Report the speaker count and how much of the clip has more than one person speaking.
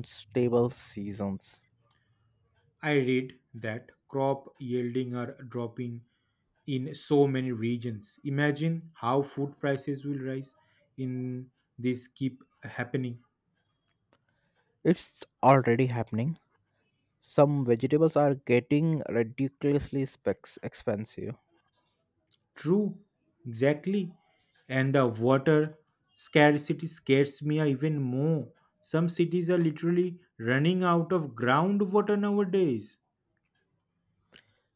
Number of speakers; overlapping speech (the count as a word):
two, no overlap